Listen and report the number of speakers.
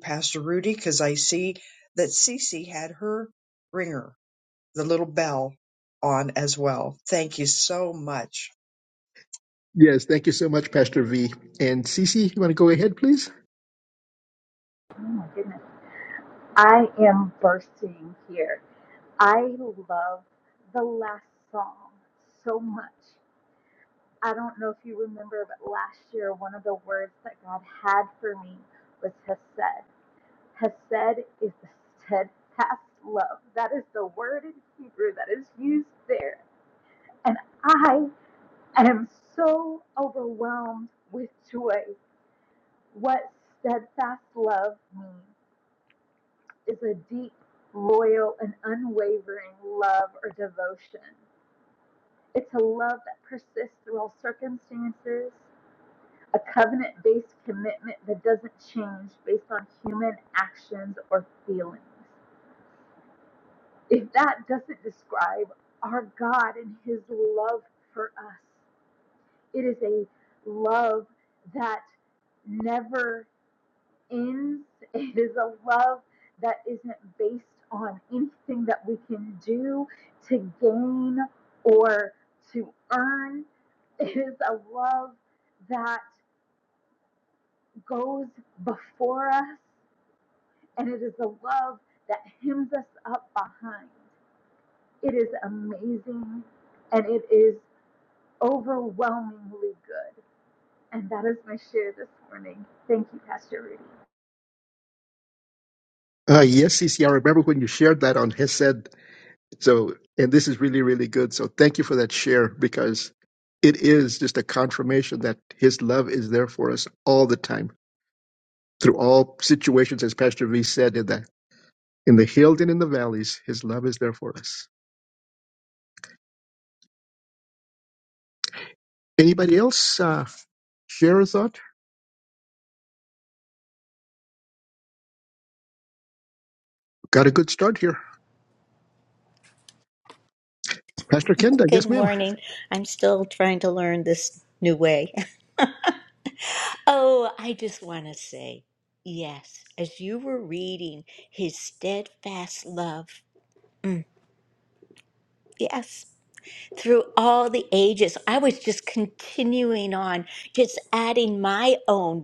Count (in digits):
4